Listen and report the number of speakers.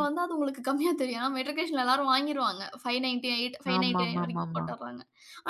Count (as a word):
two